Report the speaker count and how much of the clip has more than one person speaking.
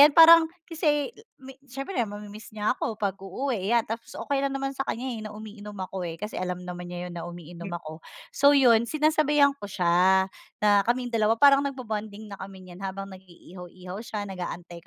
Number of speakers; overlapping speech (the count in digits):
1, no overlap